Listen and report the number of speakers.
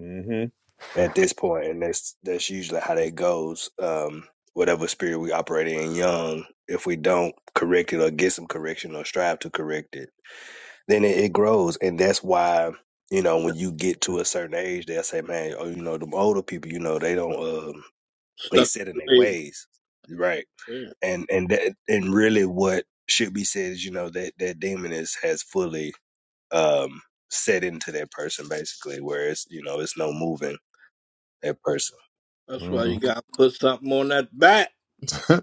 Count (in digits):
3